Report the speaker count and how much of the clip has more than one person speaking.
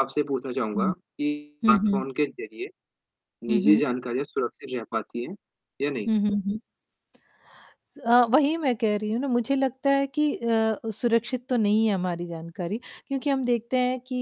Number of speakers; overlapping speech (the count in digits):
2, about 6%